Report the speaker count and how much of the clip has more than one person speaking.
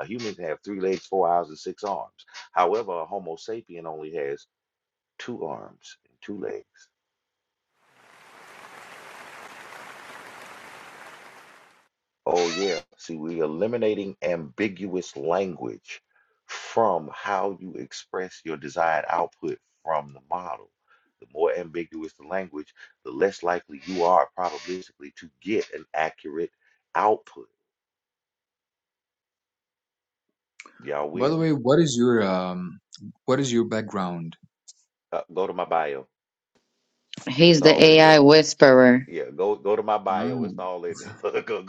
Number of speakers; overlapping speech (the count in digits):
3, about 4%